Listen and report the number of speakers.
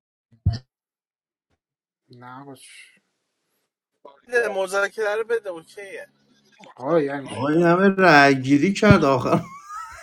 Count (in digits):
3